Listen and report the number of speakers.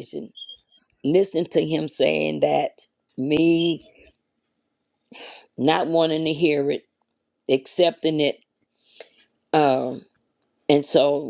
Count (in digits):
1